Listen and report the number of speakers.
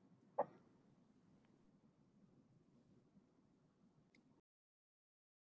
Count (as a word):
zero